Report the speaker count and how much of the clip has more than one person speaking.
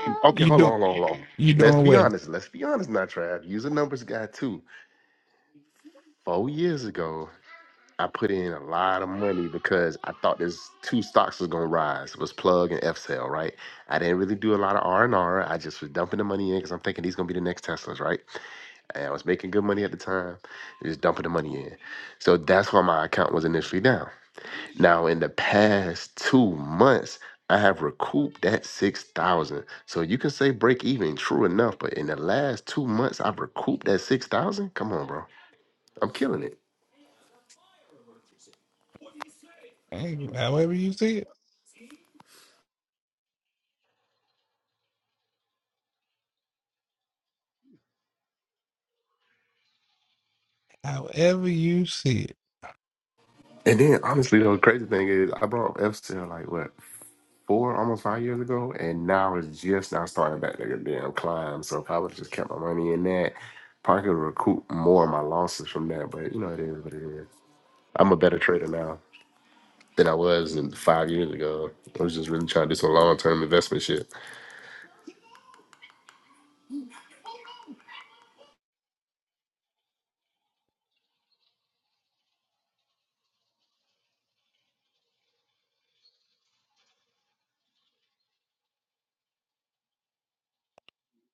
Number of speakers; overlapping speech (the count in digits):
2, about 1%